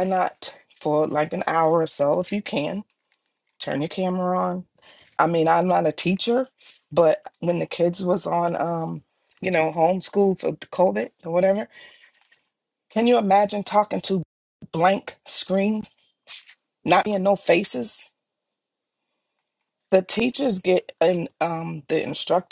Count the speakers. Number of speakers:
one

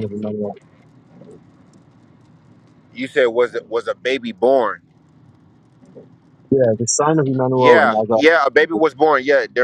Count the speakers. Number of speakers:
two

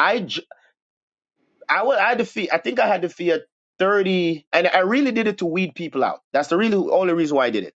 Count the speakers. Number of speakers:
one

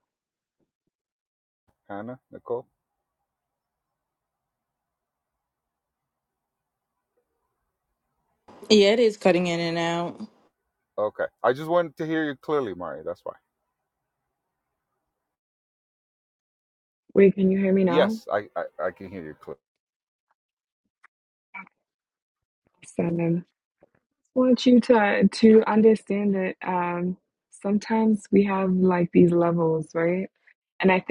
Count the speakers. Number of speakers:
three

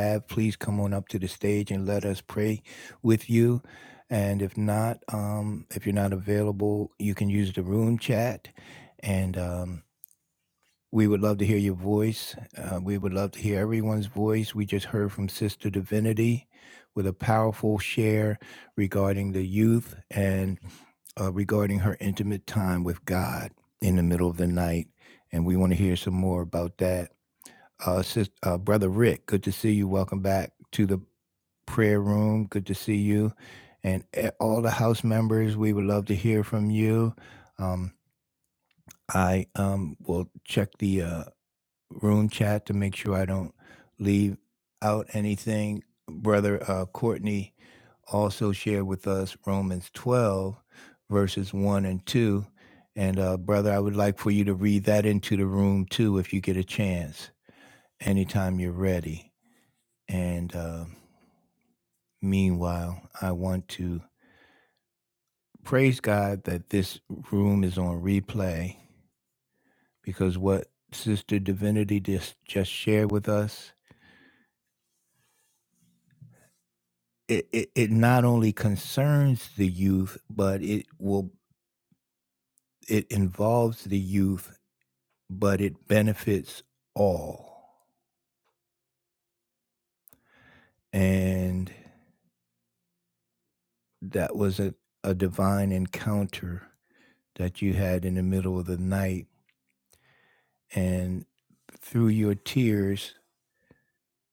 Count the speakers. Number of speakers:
one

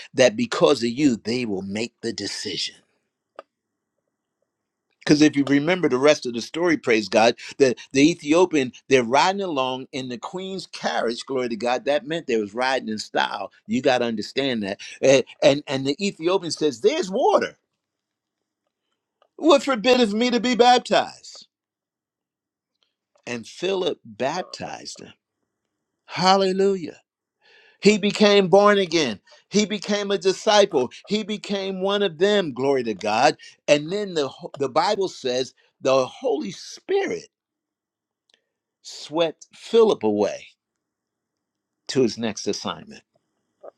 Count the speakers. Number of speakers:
one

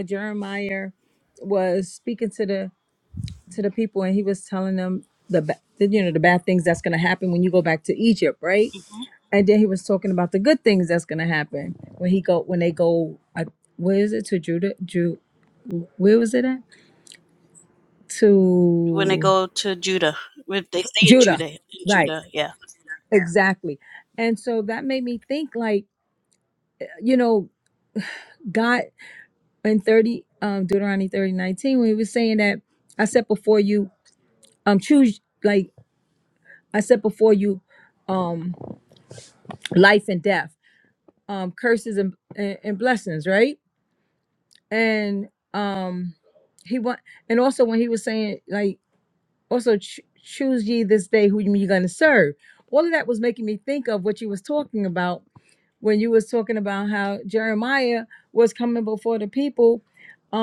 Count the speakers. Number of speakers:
two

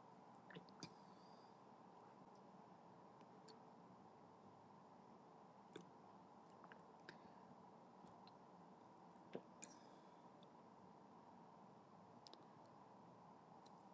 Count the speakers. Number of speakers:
zero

